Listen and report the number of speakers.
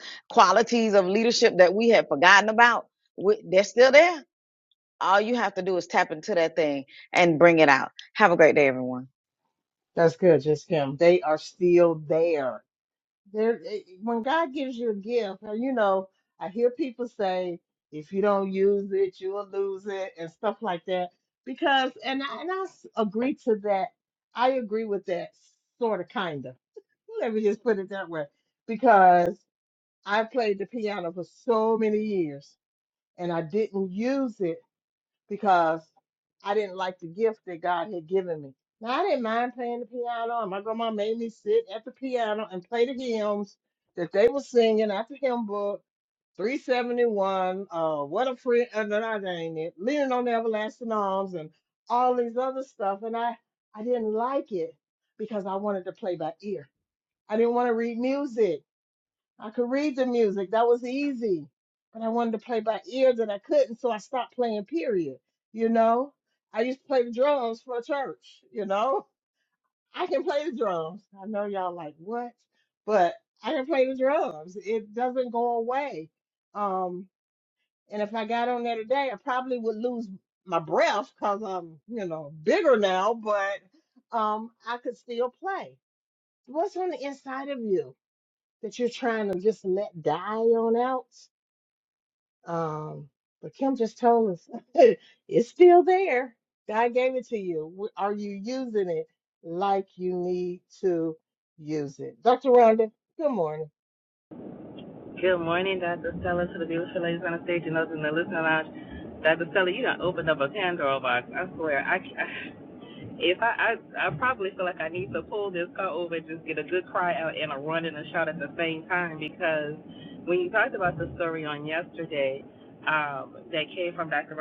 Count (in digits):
3